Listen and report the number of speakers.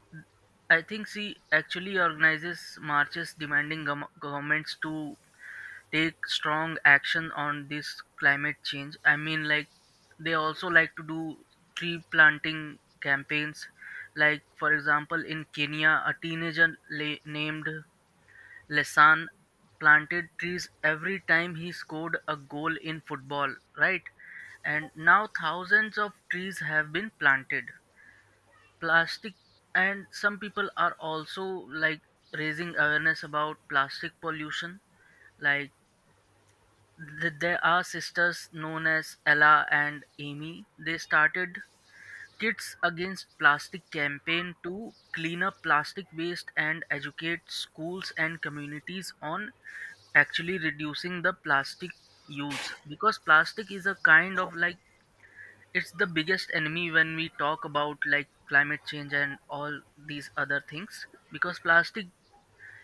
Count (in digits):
1